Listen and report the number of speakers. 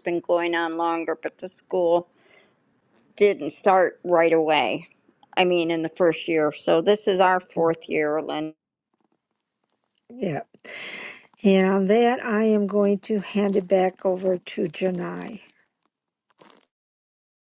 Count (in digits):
2